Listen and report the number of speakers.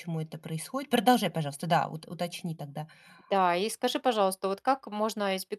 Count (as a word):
two